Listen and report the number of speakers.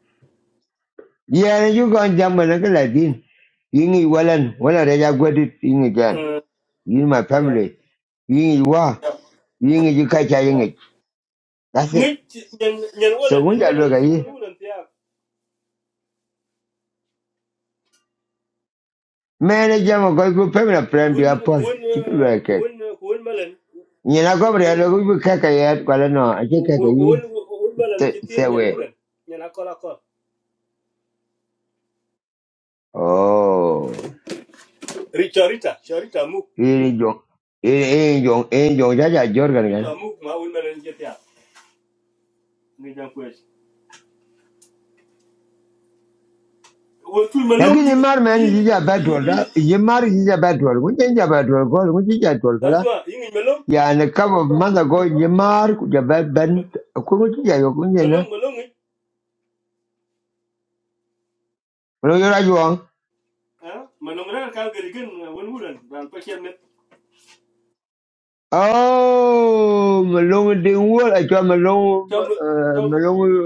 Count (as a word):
two